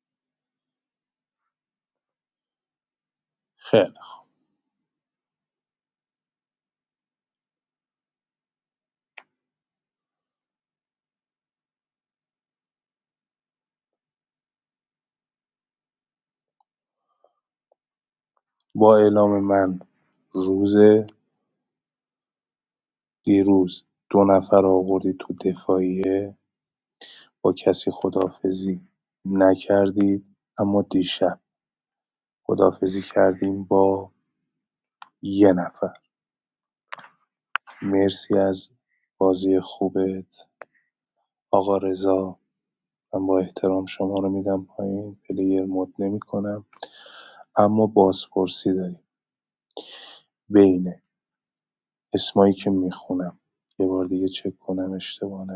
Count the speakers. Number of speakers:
one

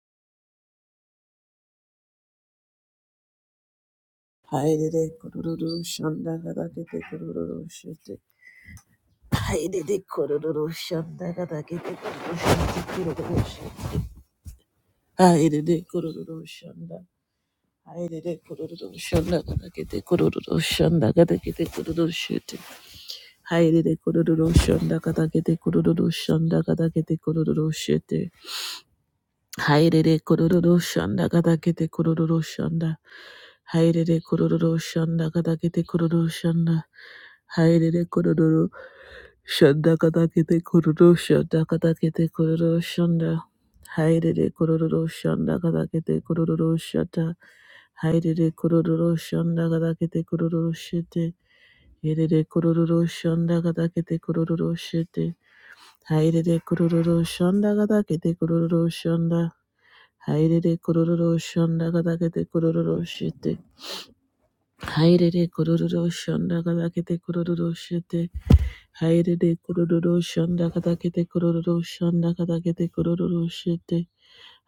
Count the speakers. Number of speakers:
one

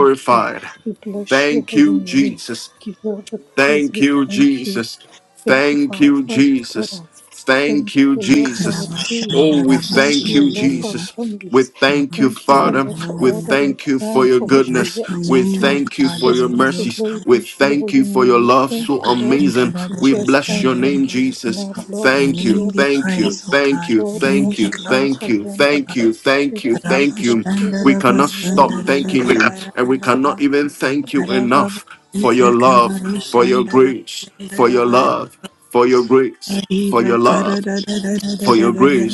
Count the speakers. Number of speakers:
three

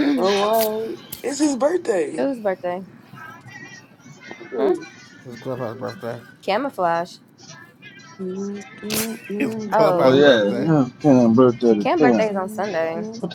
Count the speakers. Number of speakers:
four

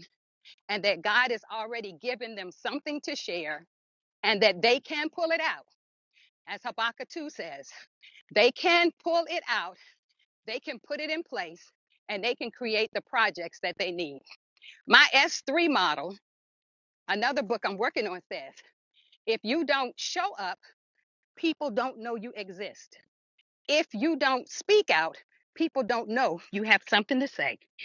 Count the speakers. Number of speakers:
one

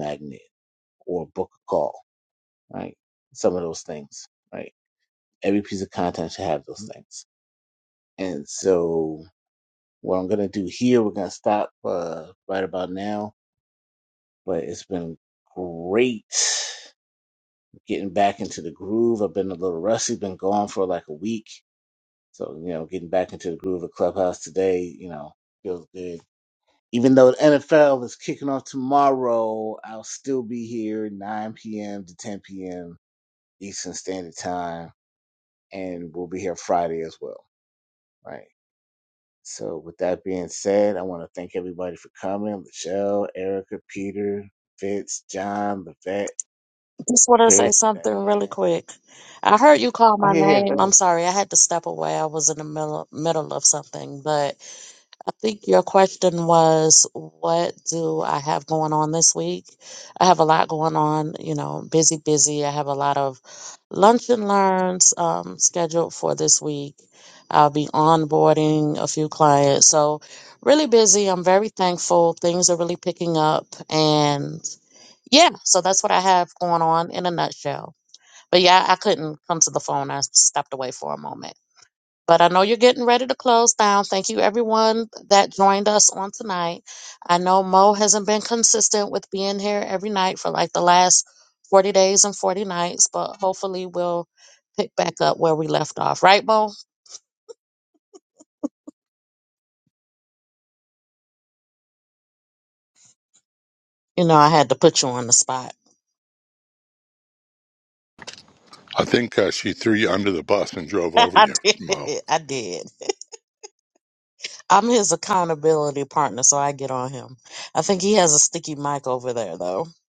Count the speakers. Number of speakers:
three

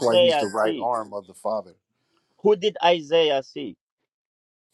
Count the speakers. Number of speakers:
two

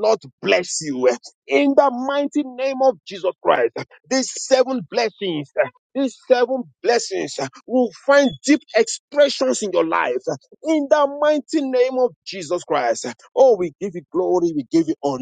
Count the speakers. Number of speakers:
one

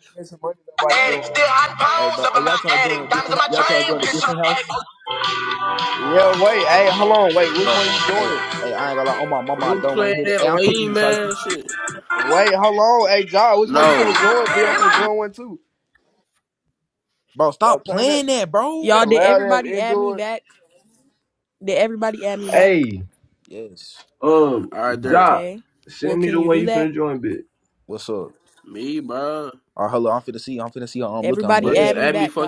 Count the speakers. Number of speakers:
five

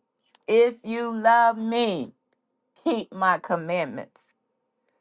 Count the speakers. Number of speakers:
one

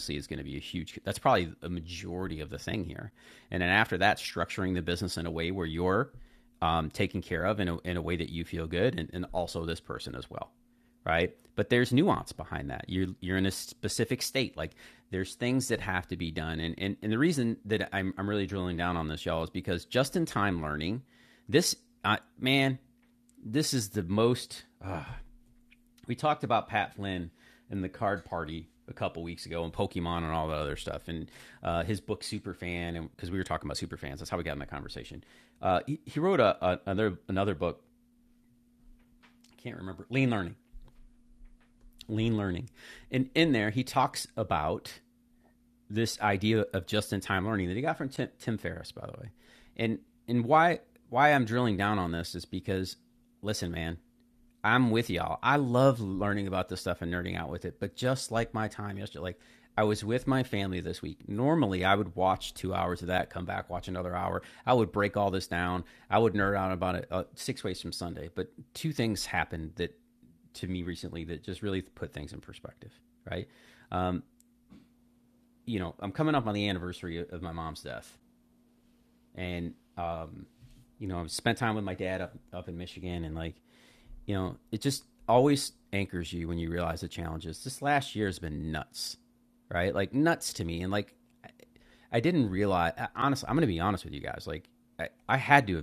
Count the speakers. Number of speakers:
one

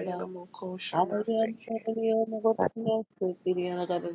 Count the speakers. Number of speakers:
two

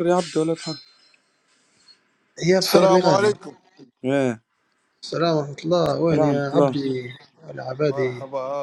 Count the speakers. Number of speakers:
three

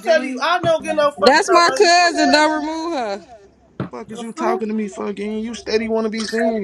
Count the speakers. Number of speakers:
three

